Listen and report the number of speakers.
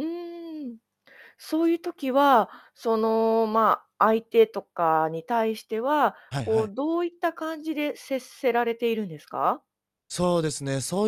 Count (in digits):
2